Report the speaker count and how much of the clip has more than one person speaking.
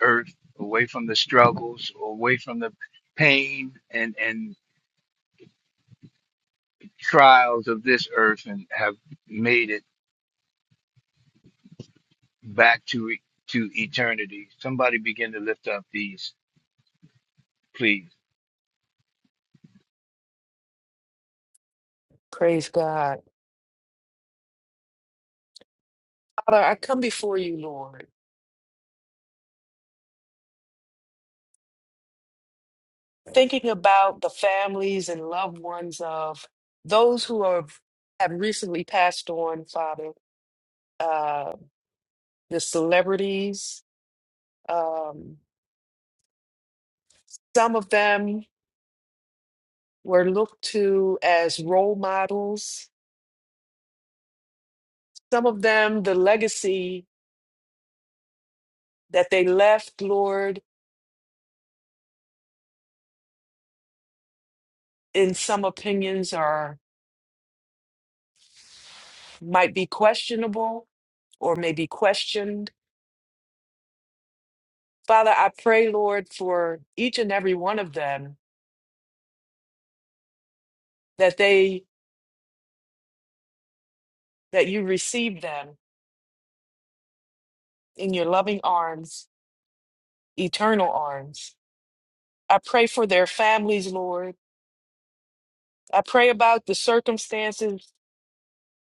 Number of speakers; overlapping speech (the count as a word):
two, no overlap